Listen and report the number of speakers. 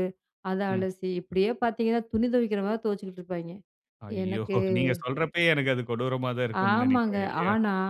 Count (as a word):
two